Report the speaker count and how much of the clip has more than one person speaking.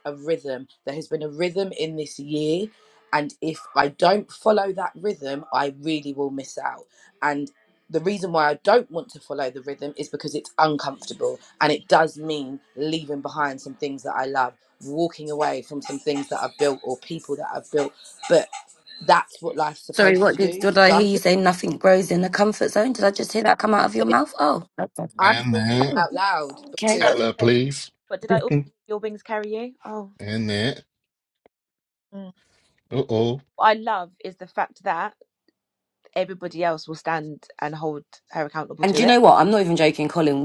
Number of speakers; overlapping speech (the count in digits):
4, about 8%